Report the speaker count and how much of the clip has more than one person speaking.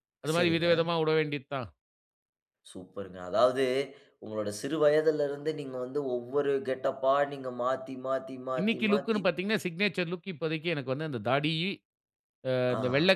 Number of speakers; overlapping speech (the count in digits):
2, about 11%